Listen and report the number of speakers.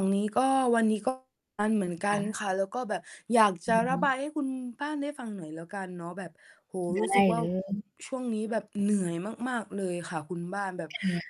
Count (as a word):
two